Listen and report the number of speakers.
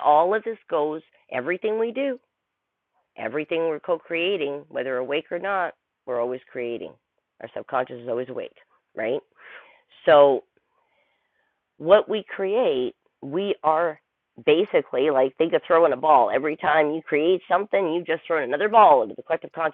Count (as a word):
one